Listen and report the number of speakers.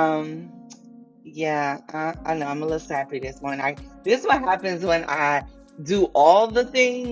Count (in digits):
1